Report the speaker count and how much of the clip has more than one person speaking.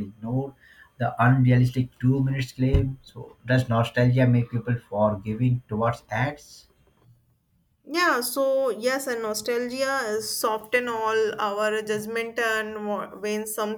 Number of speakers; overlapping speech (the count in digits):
2, no overlap